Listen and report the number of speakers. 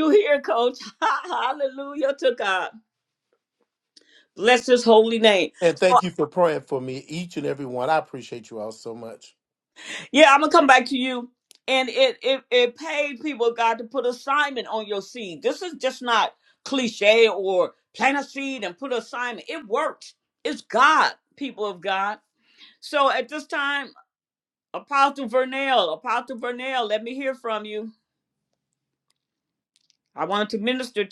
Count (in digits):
2